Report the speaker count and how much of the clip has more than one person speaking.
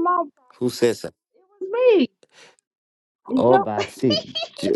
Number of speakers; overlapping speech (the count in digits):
2, about 12%